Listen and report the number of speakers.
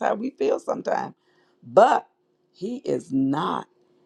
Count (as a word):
one